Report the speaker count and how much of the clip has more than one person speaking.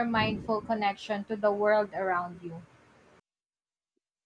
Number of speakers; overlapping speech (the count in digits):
1, no overlap